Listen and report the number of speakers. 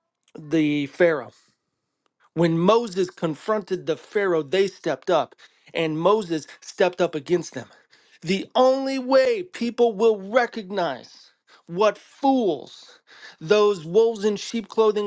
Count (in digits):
1